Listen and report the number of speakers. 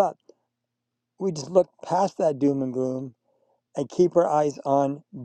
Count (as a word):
one